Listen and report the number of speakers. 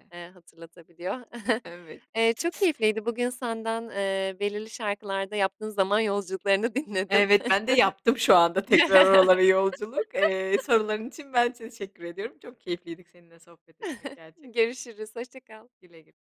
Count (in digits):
2